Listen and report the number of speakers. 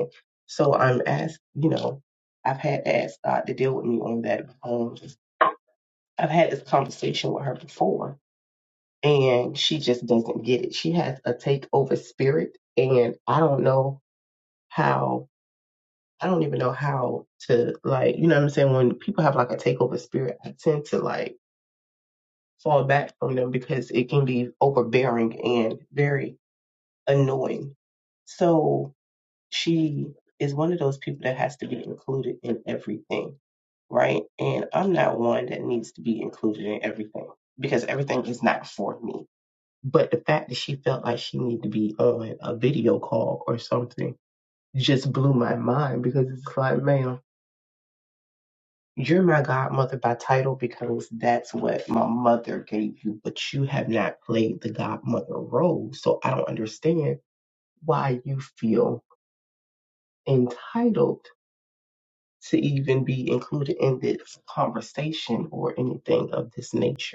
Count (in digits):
1